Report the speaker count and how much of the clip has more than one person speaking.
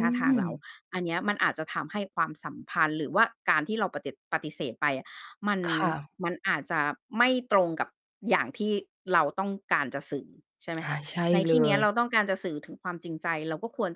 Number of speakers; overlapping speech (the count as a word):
two, about 7%